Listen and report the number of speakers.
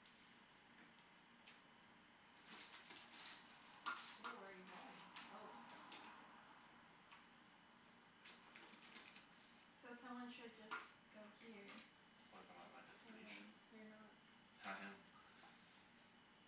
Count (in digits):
3